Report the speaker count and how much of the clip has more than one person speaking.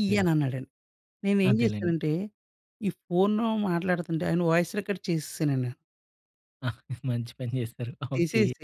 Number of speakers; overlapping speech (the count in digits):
2, about 12%